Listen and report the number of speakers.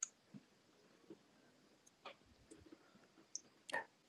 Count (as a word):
zero